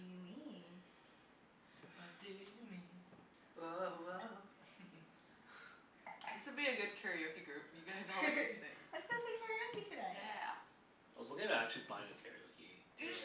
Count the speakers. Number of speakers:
4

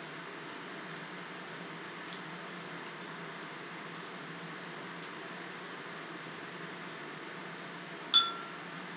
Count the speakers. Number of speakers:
0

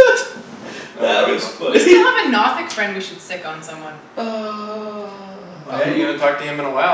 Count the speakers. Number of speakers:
3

